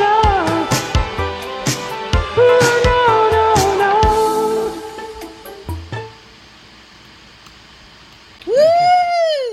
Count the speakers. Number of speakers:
2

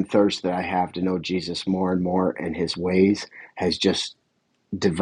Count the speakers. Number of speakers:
1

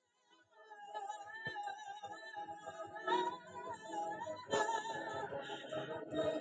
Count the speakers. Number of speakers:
0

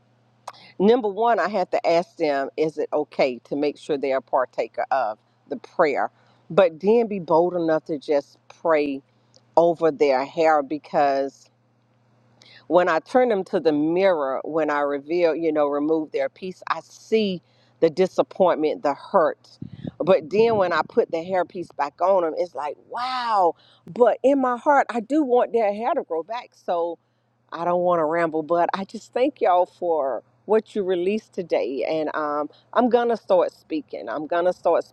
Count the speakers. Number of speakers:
1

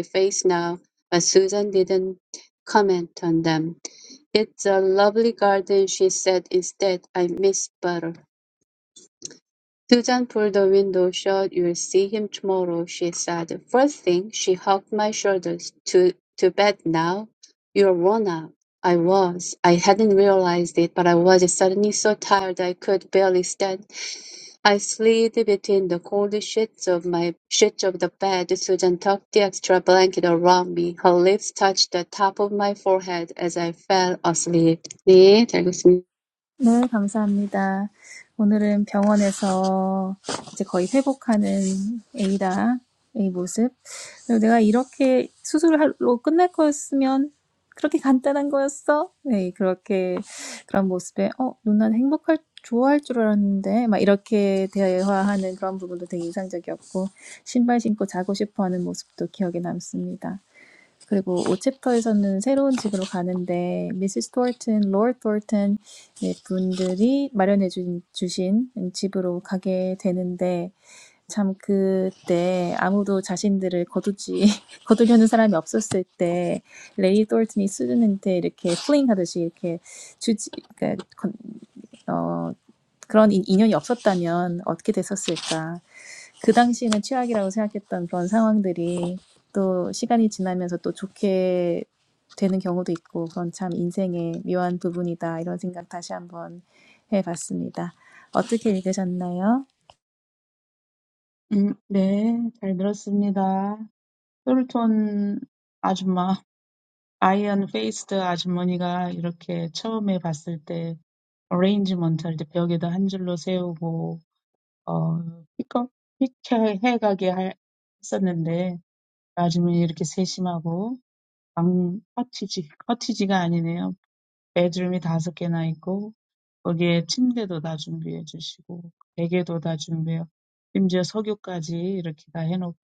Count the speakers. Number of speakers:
3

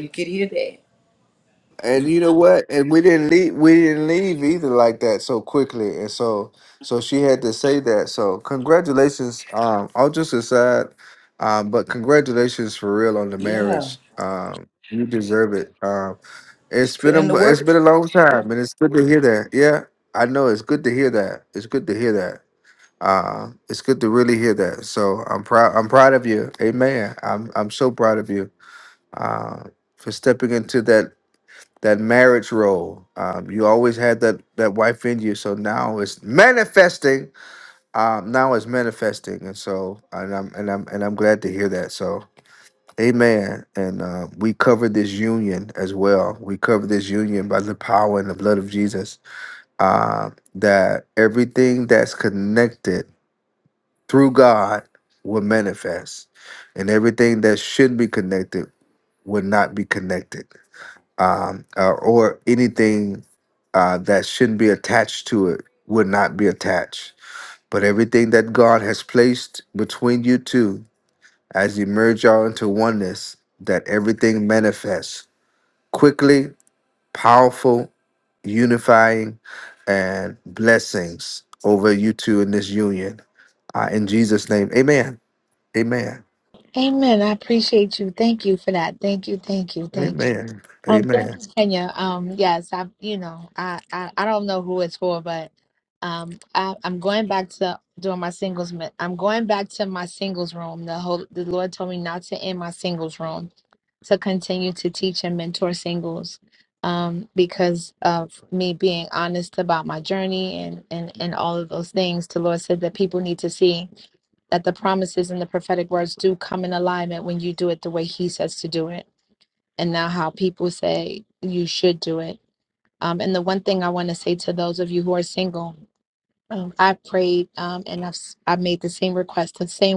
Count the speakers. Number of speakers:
3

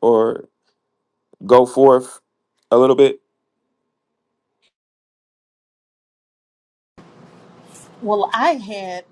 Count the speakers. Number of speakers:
2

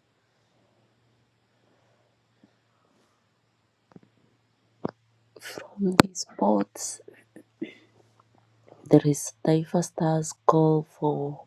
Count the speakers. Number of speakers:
1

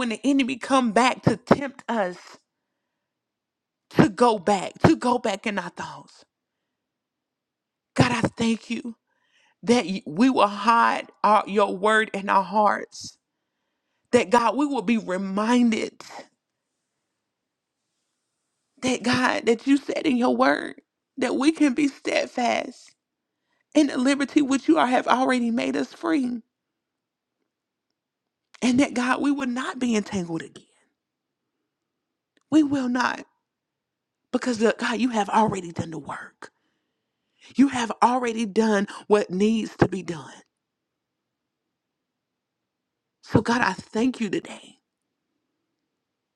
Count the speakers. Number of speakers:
1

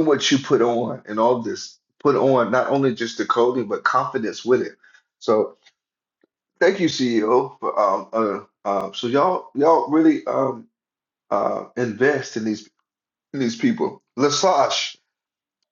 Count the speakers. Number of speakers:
1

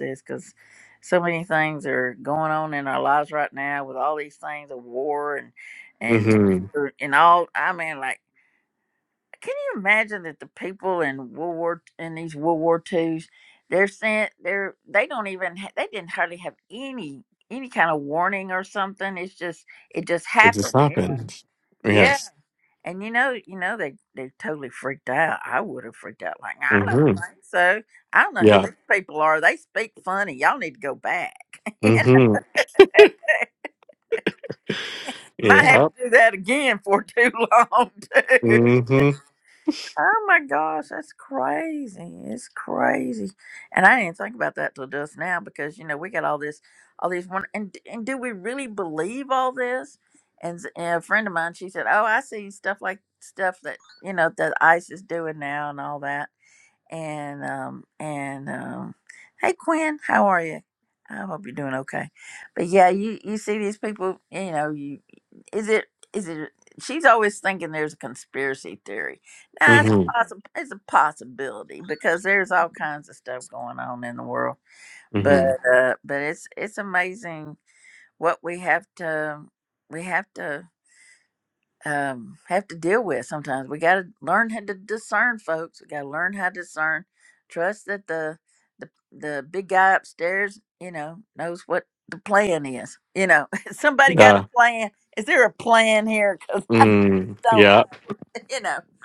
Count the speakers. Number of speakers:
2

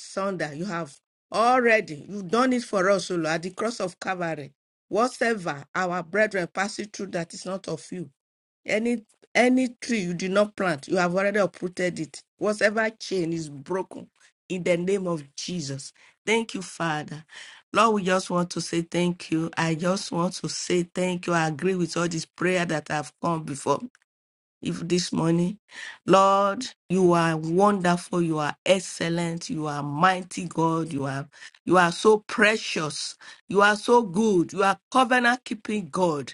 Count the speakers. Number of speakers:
1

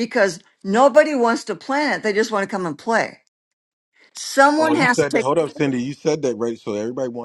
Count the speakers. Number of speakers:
2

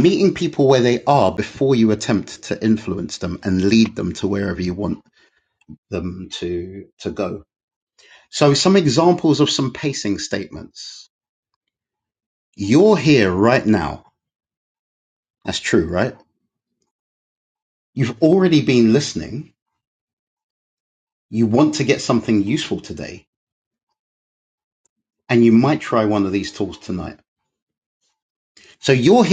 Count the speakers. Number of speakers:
1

